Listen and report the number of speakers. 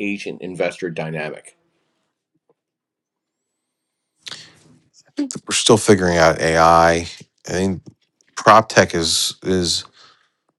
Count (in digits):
2